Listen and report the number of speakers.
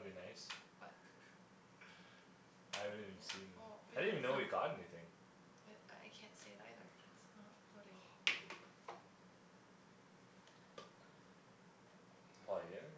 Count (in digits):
2